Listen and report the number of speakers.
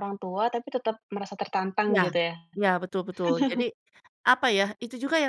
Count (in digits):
2